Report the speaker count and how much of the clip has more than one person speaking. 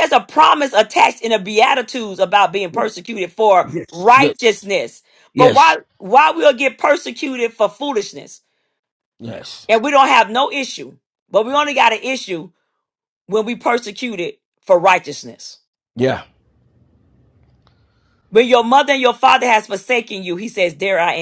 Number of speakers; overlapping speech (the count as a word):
two, about 6%